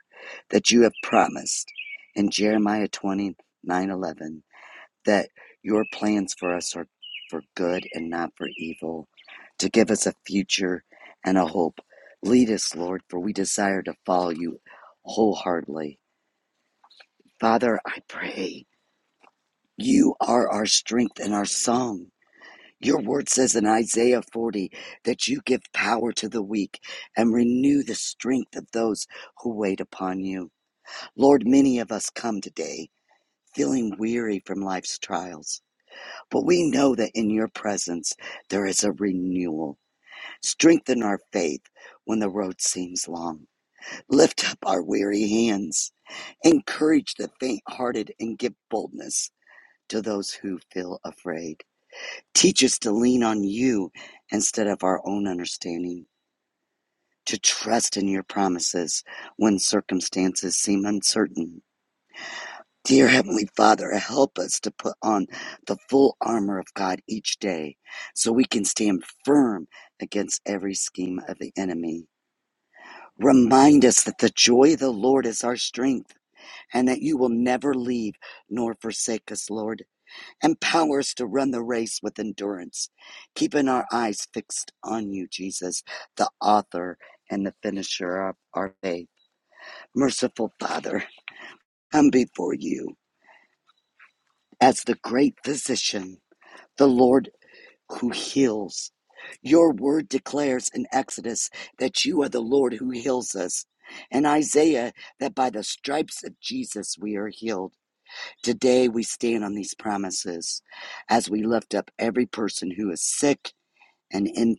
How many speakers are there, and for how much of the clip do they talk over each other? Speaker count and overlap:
one, no overlap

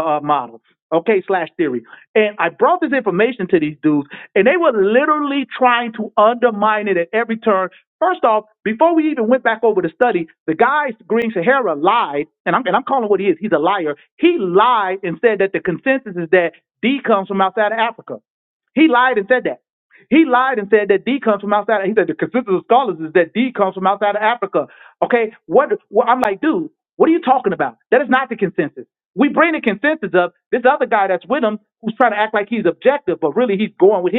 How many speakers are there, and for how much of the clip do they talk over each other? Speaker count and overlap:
one, no overlap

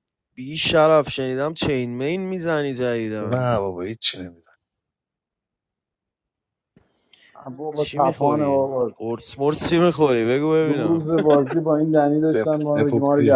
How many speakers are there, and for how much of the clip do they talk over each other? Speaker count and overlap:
three, about 19%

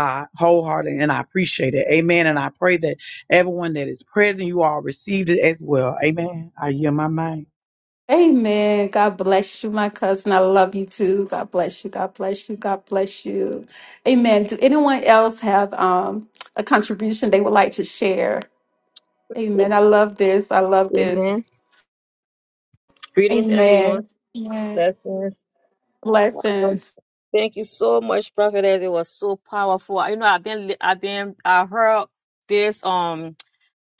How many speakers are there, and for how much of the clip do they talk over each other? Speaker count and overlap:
three, about 4%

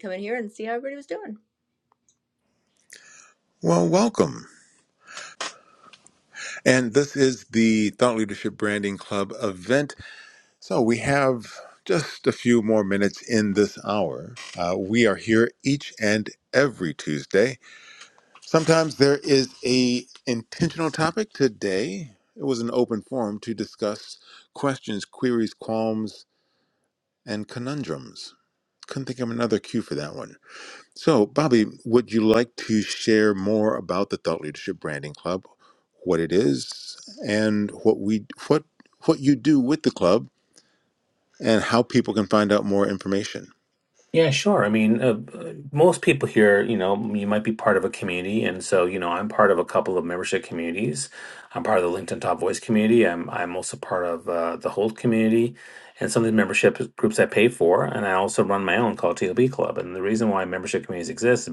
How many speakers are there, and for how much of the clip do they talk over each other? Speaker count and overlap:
three, no overlap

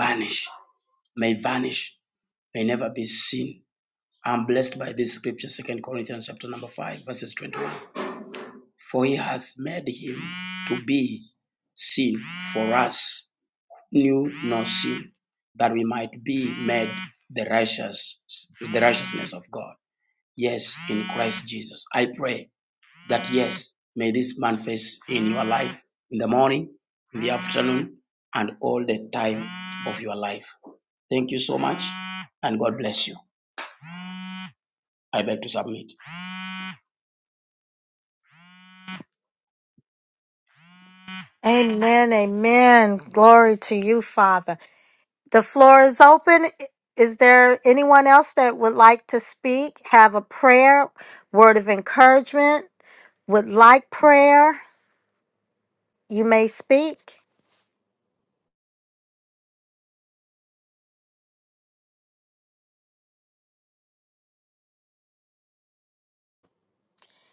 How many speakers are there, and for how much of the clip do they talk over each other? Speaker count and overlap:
two, no overlap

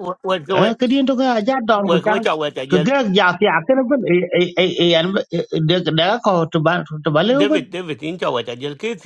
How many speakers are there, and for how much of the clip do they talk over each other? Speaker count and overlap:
two, about 12%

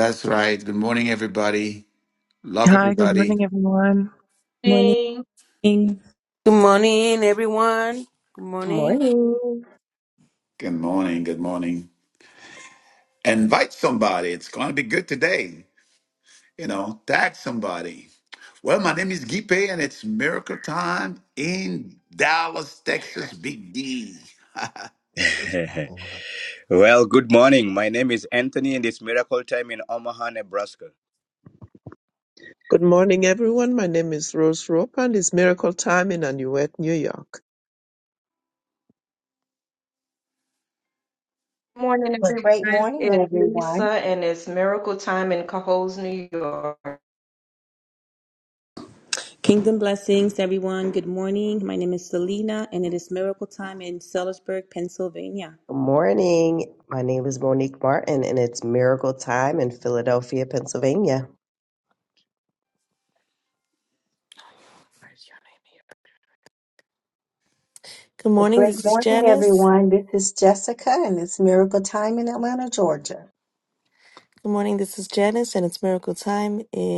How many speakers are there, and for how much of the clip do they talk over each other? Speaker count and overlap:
ten, about 5%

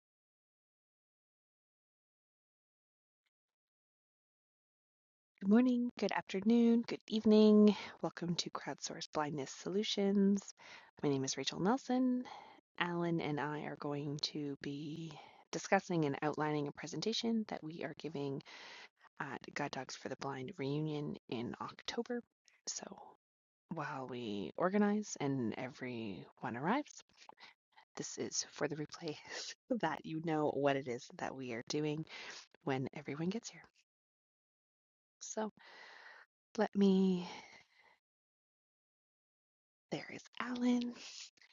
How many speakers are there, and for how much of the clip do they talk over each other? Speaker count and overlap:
one, no overlap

